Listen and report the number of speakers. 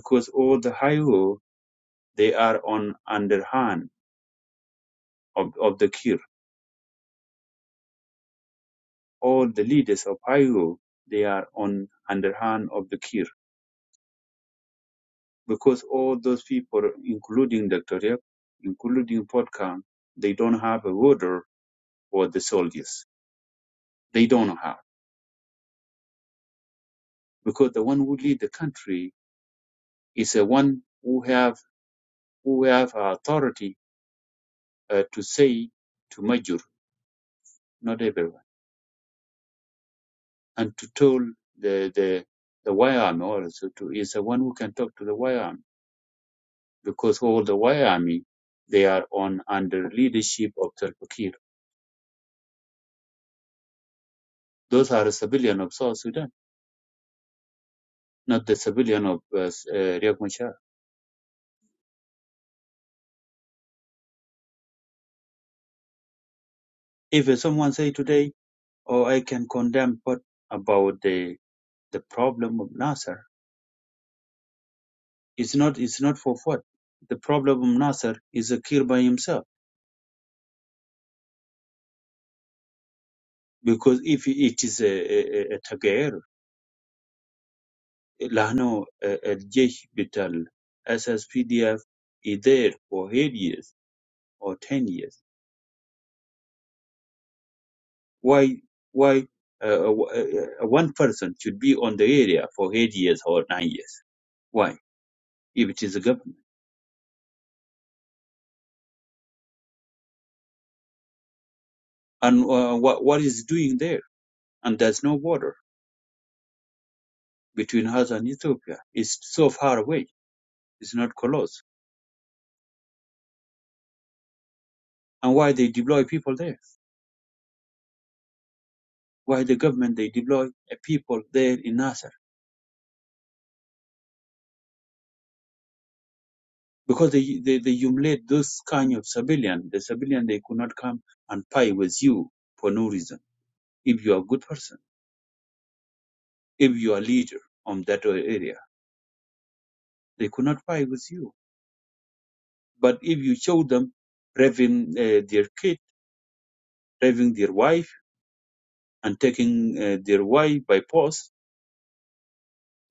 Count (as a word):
one